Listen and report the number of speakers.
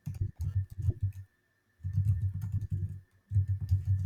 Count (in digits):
0